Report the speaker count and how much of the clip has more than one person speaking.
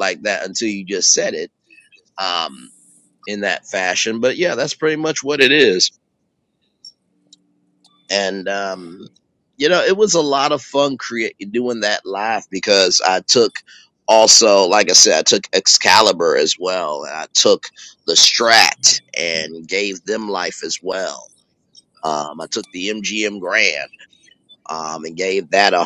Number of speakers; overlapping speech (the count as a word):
one, no overlap